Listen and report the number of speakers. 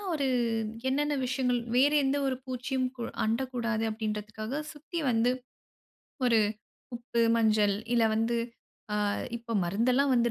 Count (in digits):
1